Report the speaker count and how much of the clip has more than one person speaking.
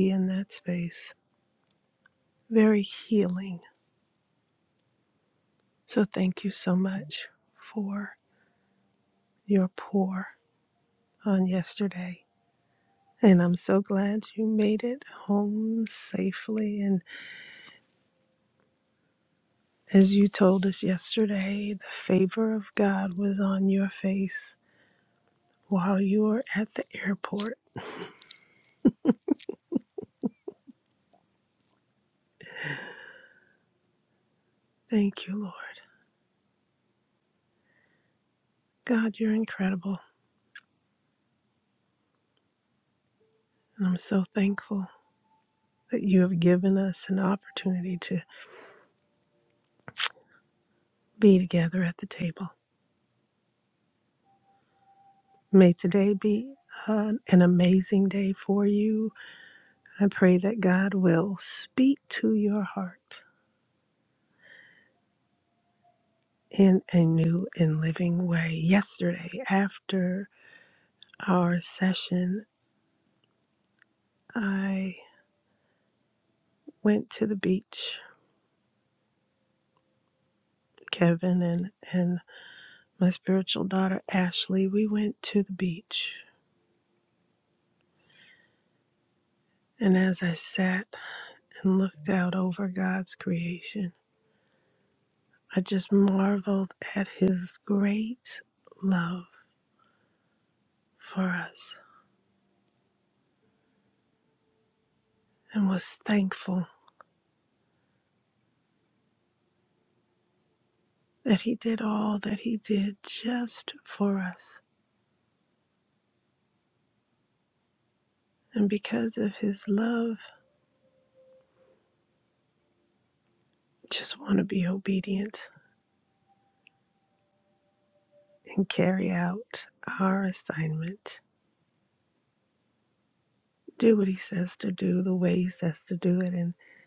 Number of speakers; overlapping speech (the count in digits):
1, no overlap